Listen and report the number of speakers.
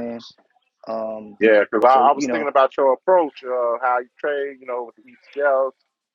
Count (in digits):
2